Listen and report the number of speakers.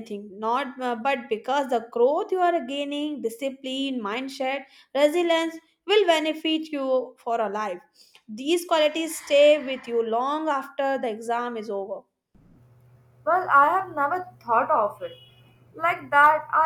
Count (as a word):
two